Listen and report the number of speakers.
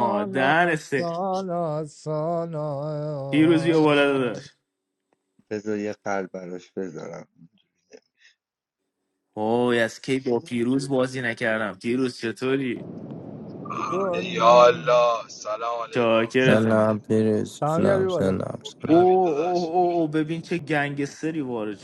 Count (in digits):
5